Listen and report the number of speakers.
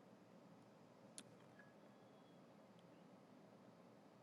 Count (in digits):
0